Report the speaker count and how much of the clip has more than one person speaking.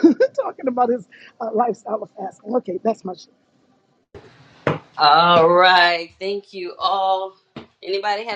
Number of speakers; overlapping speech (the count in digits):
2, no overlap